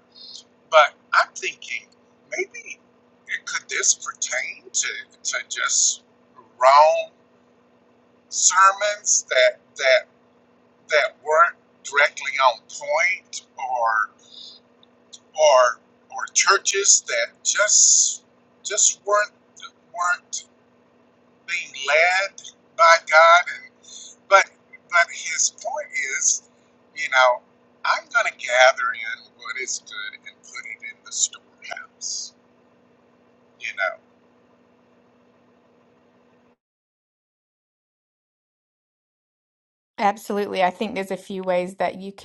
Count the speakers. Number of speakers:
2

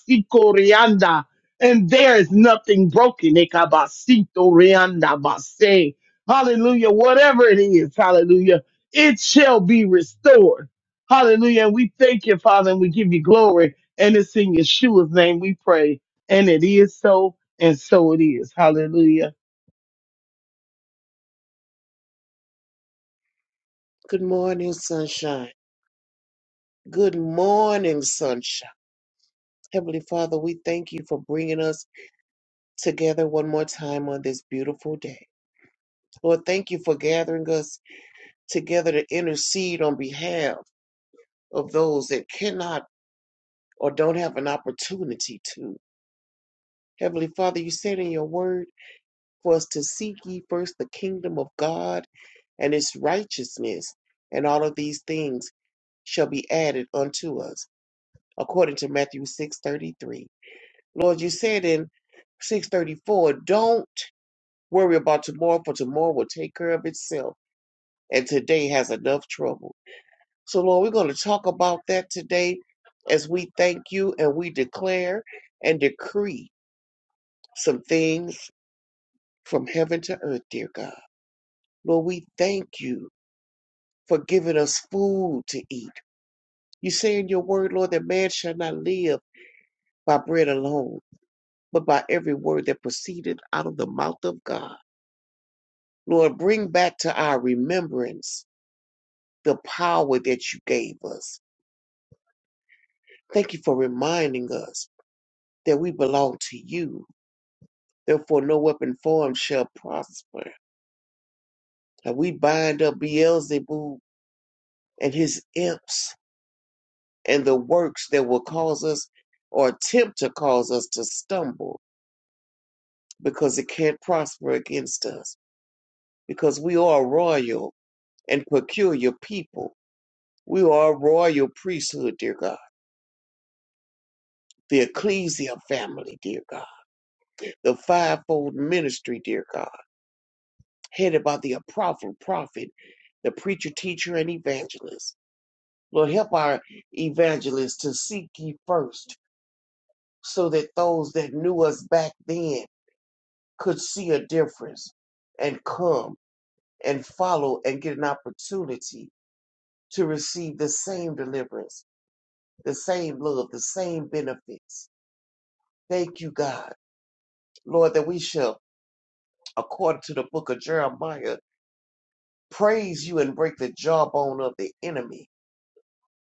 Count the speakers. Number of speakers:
2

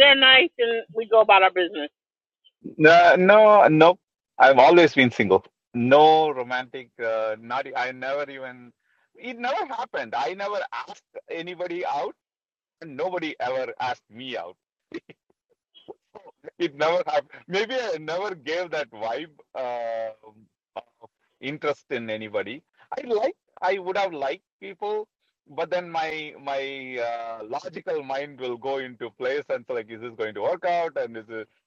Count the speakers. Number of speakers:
2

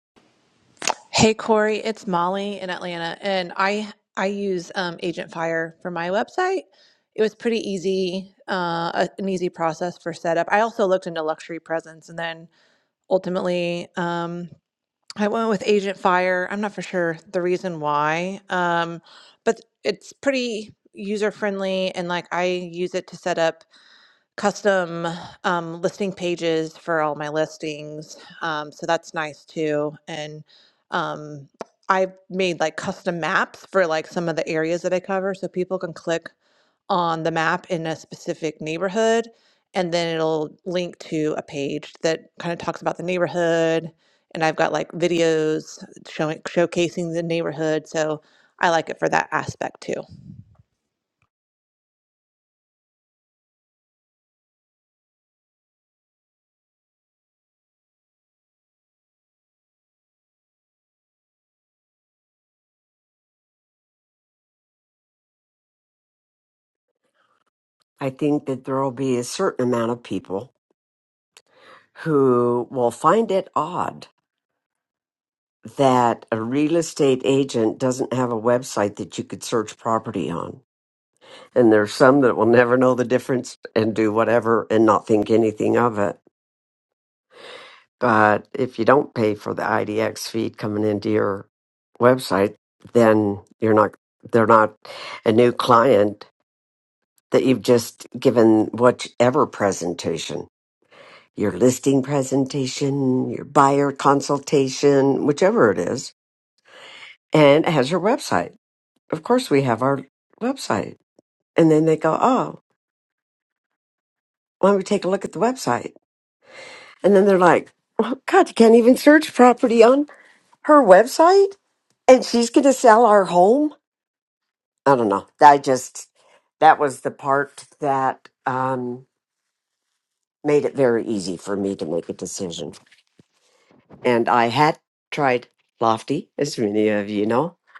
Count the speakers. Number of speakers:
2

